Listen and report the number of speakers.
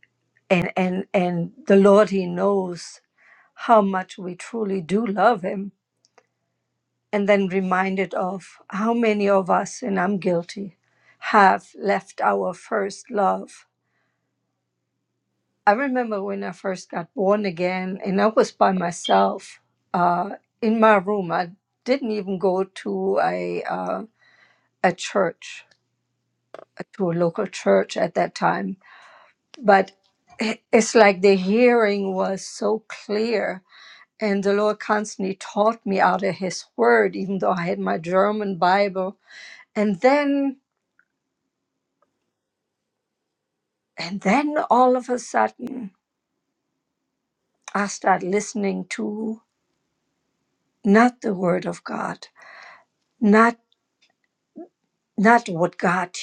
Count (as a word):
one